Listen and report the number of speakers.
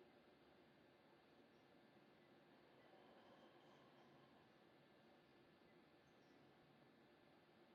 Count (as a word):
zero